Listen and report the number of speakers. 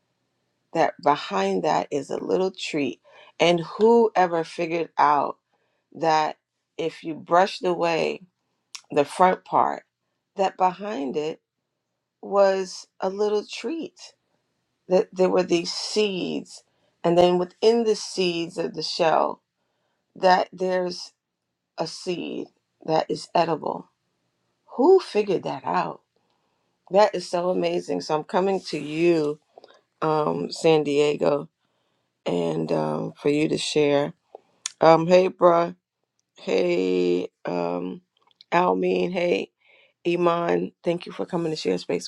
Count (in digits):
1